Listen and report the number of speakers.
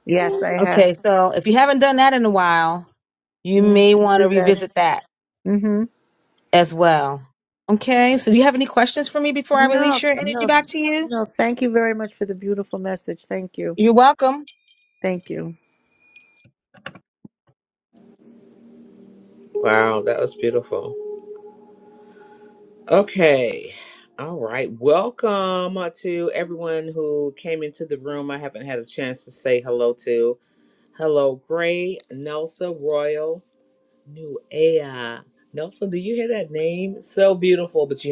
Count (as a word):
three